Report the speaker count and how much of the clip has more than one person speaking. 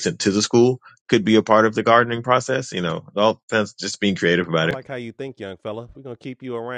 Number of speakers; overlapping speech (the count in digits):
2, about 3%